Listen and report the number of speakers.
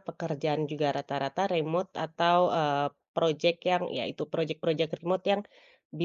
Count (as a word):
one